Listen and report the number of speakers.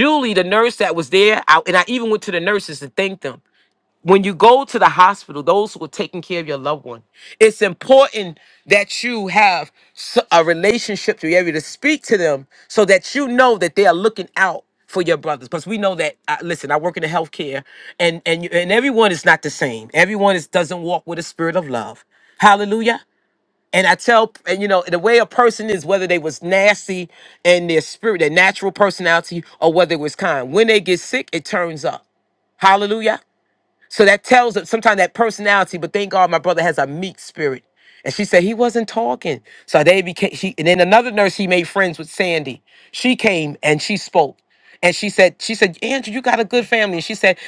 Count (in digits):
1